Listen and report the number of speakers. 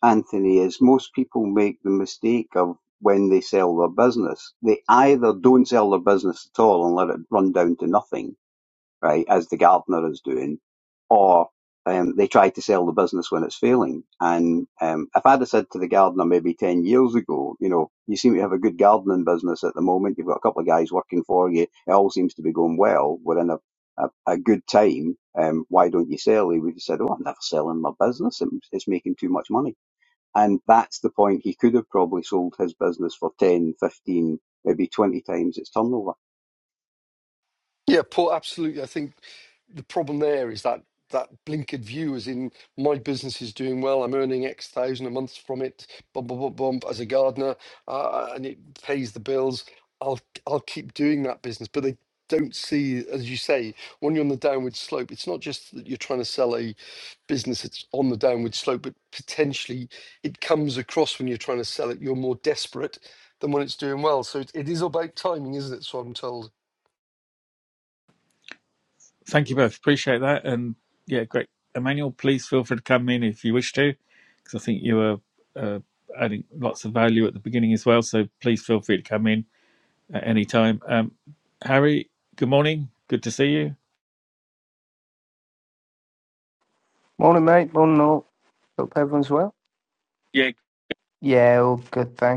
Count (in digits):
4